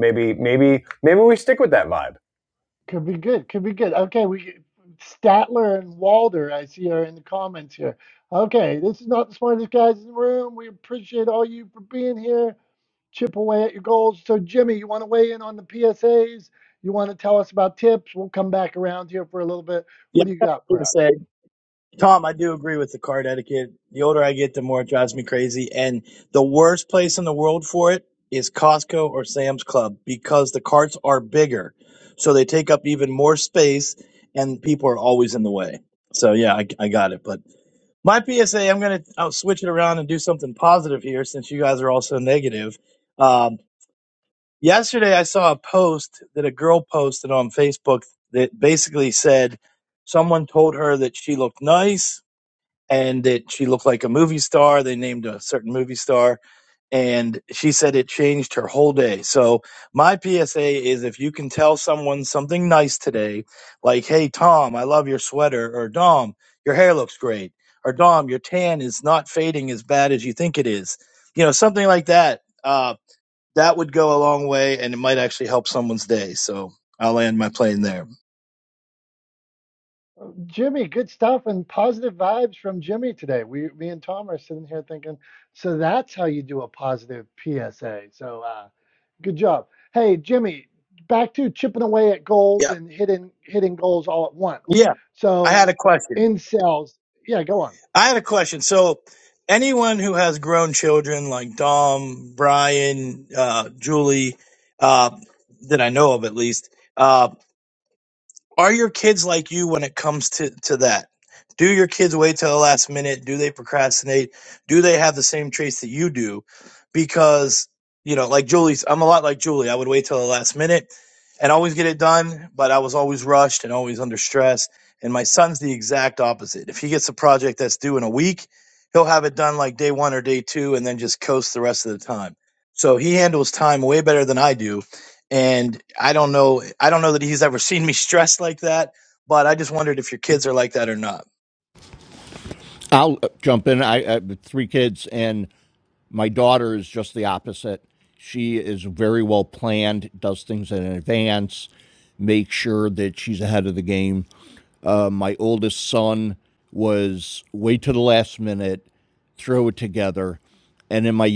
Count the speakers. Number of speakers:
4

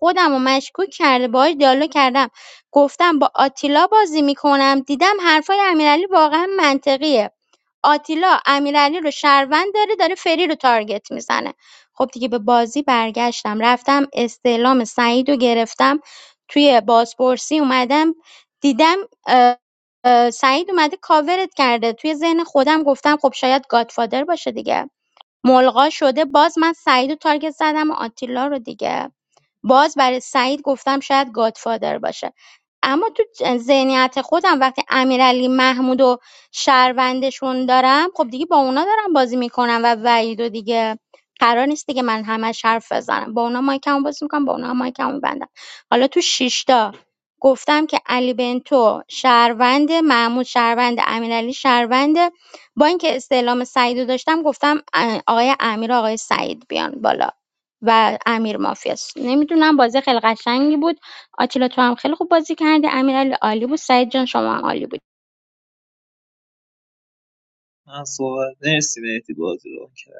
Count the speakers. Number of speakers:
2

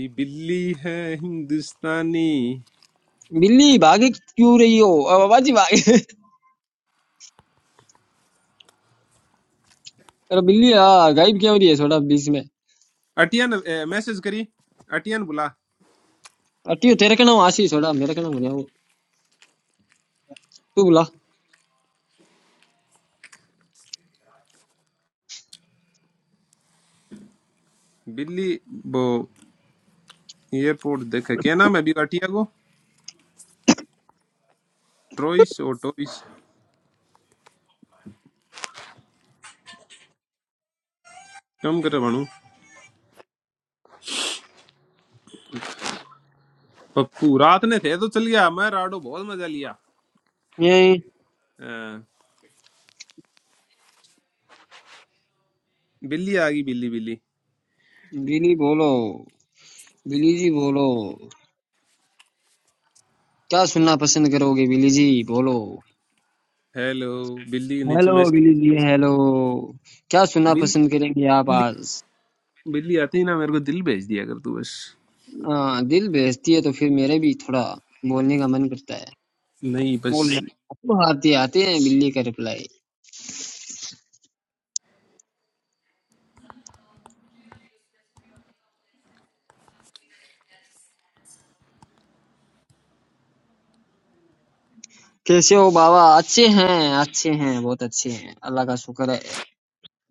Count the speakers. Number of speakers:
2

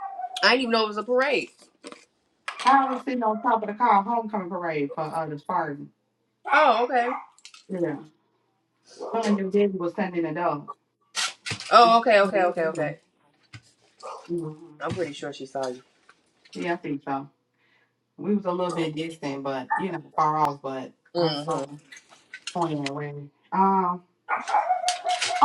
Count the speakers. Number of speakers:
2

